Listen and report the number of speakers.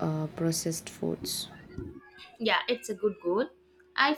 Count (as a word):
two